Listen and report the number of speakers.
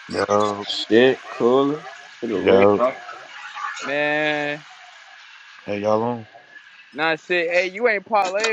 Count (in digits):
3